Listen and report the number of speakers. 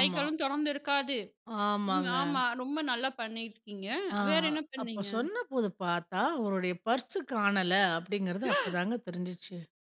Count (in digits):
2